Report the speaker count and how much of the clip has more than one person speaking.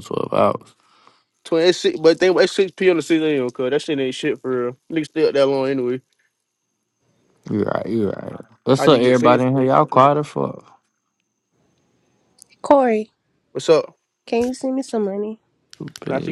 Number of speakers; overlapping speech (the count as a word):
three, about 10%